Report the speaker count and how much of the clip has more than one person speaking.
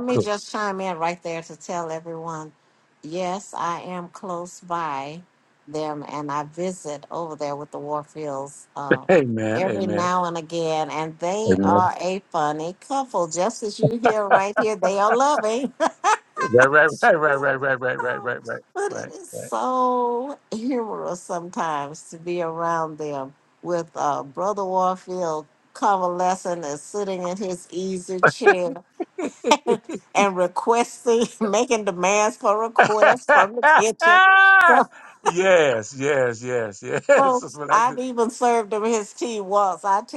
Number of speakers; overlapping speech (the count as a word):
two, about 10%